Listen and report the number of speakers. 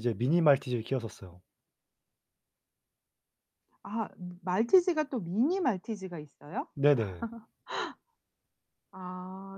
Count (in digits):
2